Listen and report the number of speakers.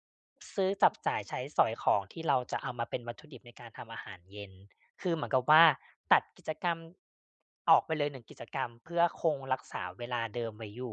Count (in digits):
1